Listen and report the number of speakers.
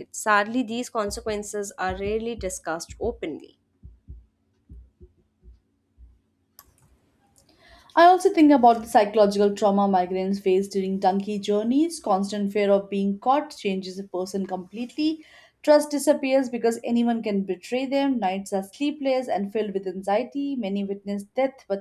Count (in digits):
2